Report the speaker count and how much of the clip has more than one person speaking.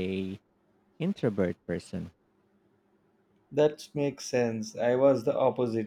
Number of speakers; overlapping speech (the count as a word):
two, no overlap